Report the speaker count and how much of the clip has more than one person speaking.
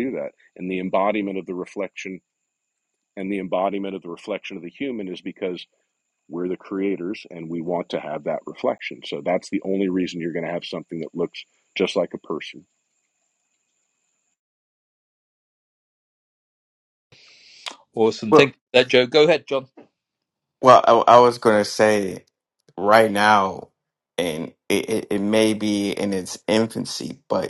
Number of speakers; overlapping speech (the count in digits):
3, no overlap